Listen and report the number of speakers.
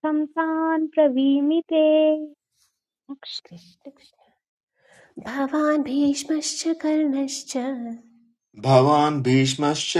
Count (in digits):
3